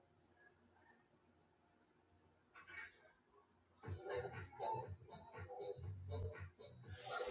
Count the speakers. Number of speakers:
0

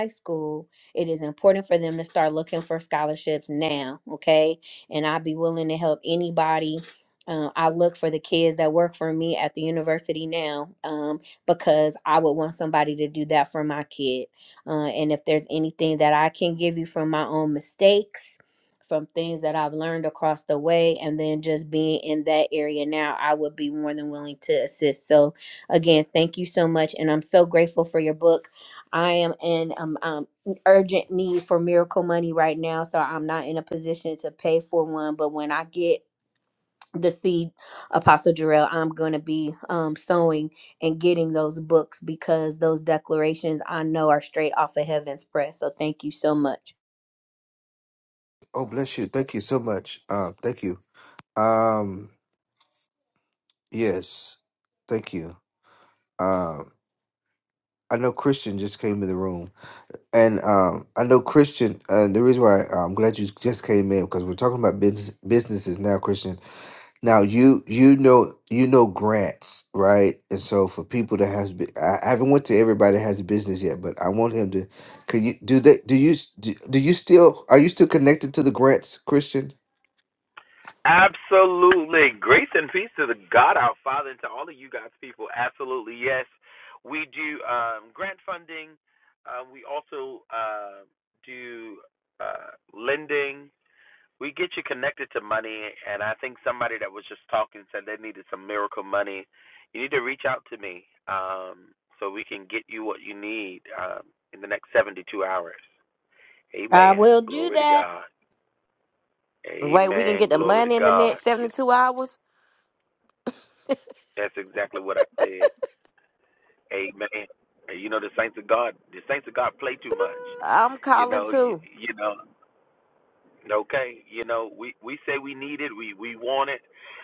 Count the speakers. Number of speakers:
4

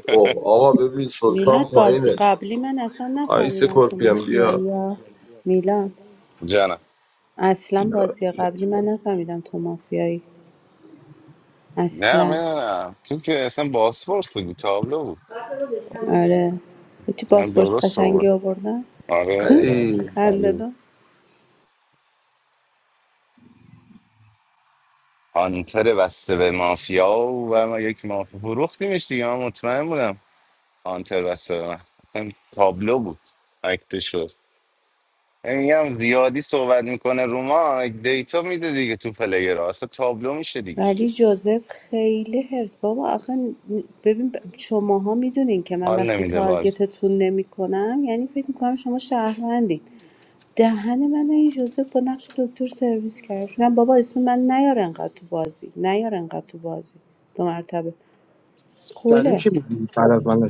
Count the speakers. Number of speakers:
4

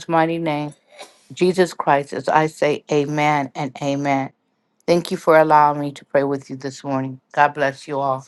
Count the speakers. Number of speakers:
1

